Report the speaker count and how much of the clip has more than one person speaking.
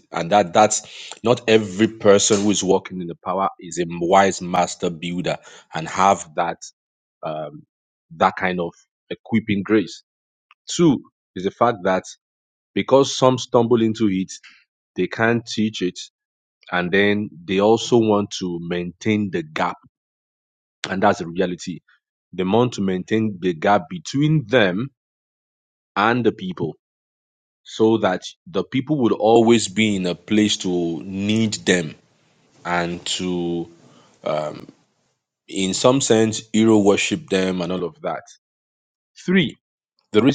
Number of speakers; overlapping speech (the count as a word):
one, no overlap